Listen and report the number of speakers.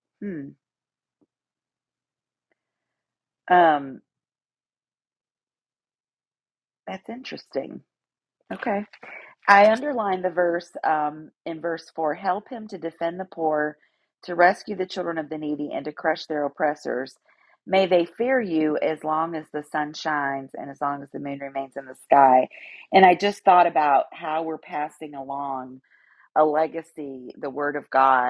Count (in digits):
1